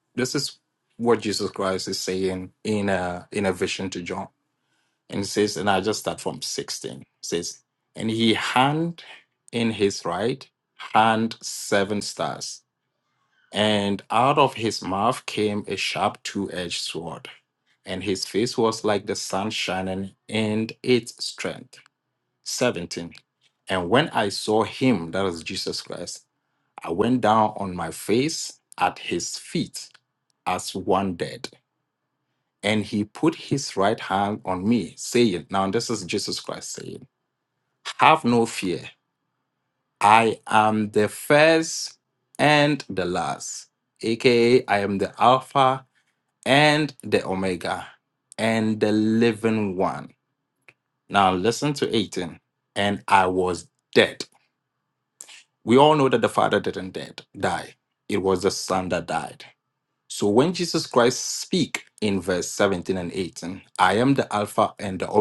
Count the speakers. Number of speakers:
1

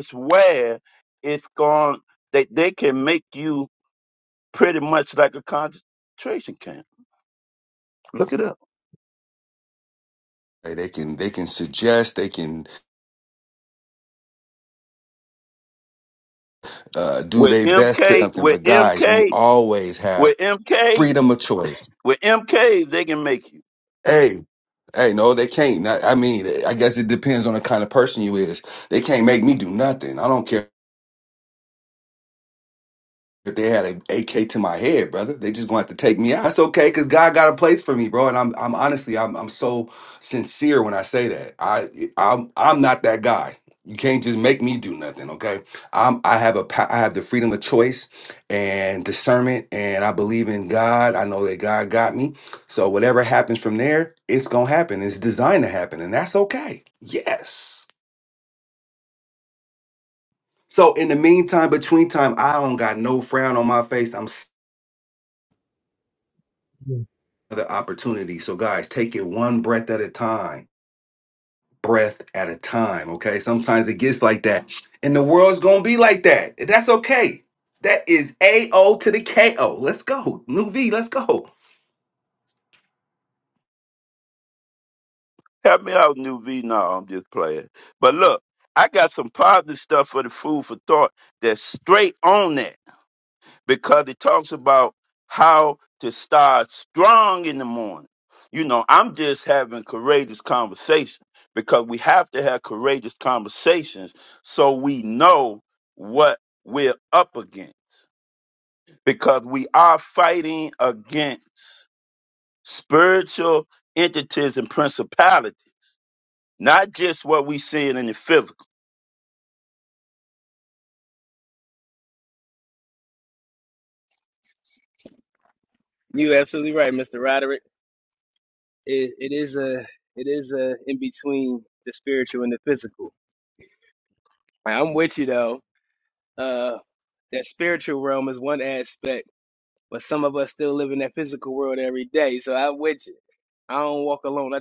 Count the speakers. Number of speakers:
3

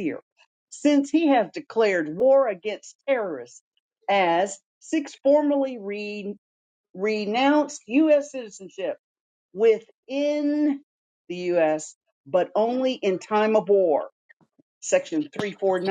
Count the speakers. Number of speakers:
1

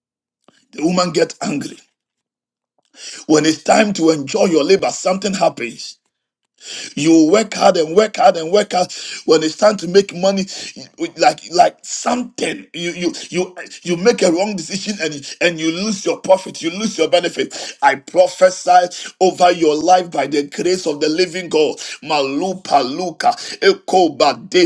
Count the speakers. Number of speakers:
1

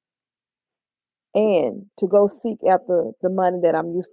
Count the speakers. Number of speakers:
1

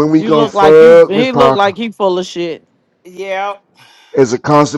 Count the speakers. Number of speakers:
3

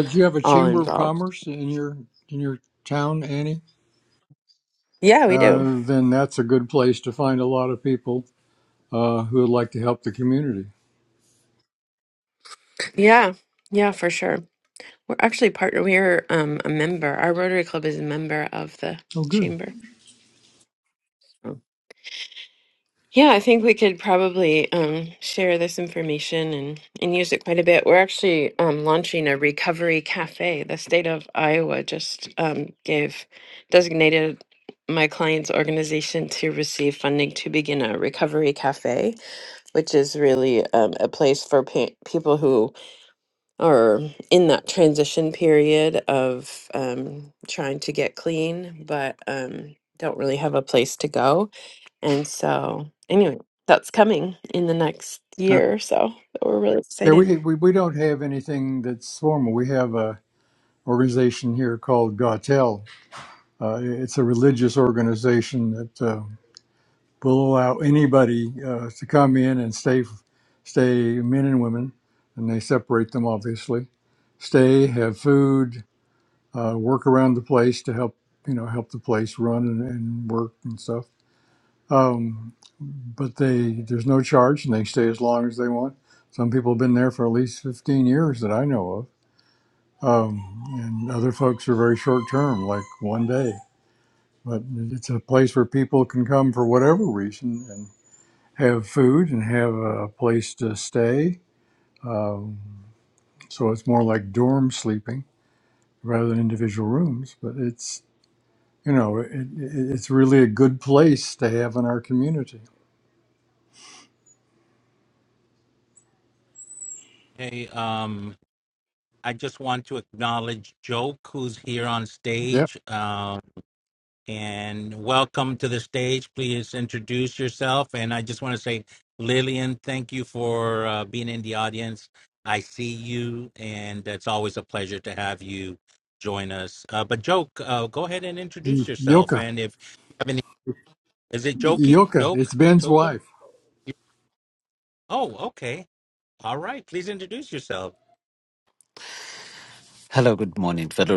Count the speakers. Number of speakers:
4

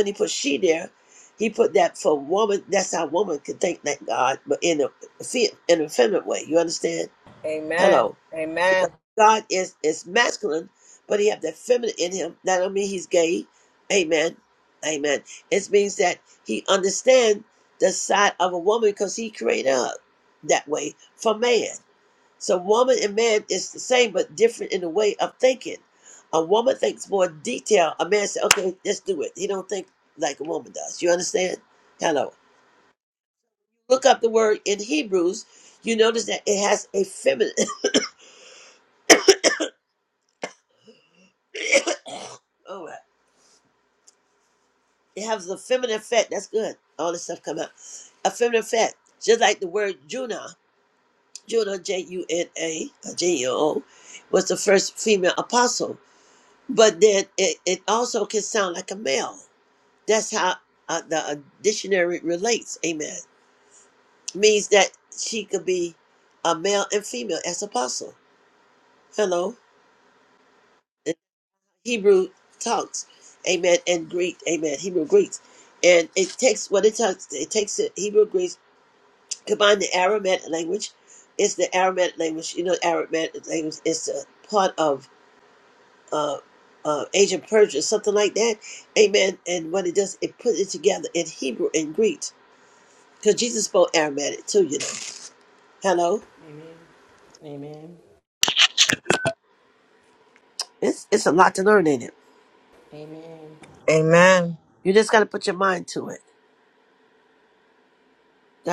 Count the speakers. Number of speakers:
3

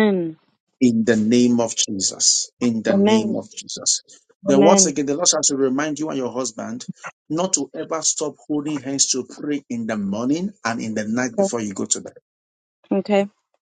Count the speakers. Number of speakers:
2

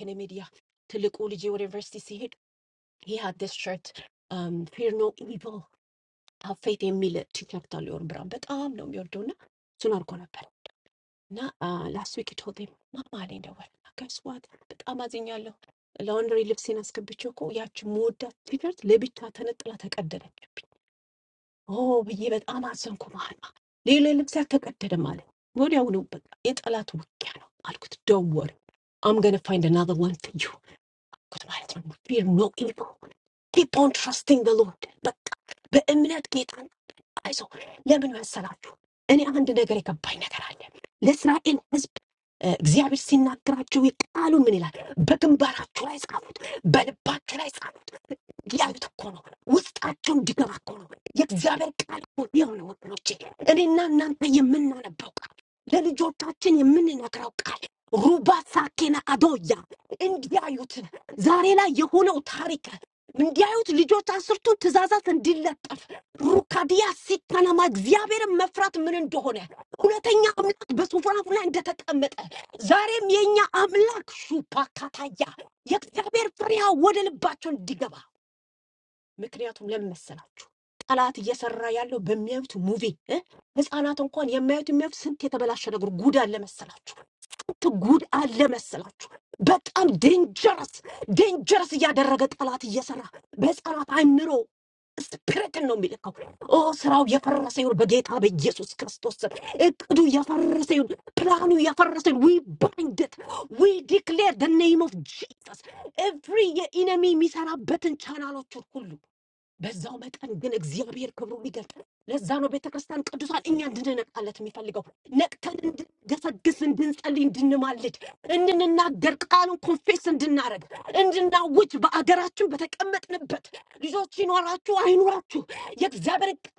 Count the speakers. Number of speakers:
1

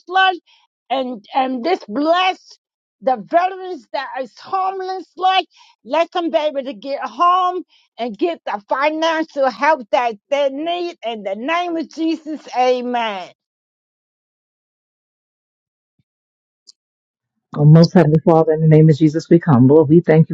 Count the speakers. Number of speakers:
2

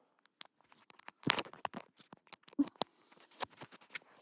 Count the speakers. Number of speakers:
0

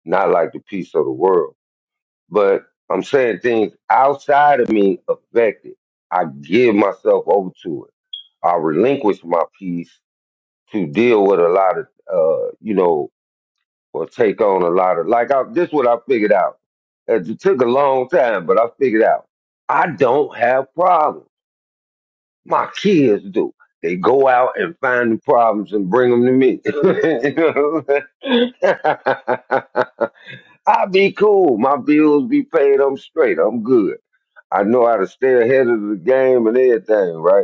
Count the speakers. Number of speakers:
1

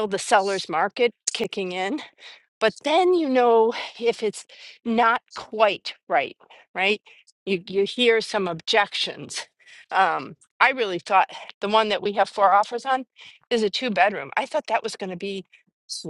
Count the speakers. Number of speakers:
1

